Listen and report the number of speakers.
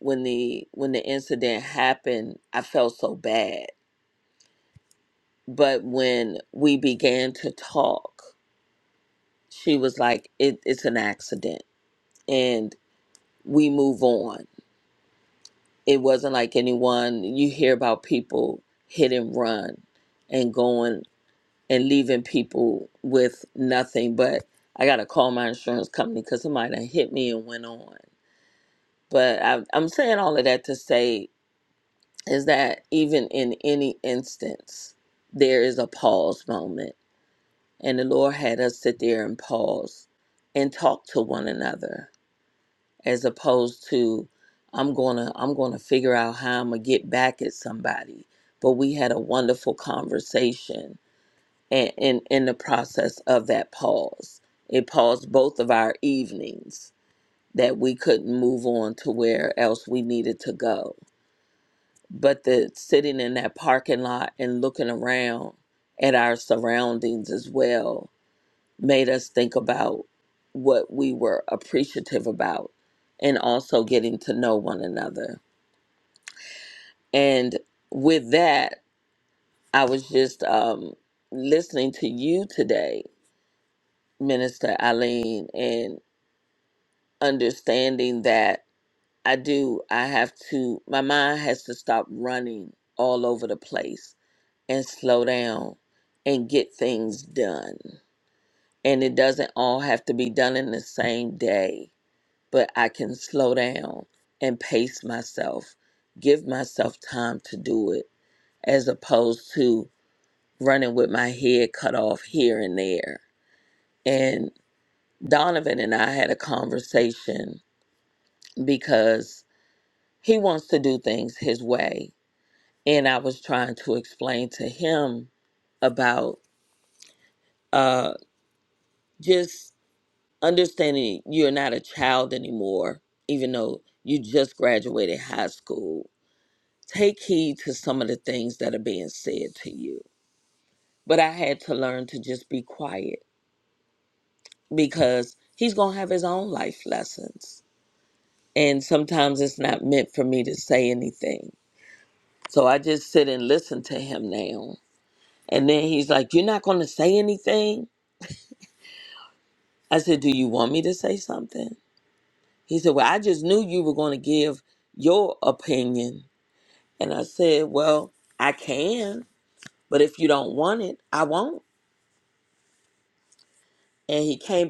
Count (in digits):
1